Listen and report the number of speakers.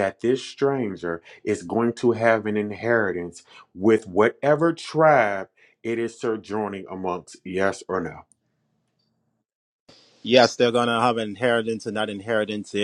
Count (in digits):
2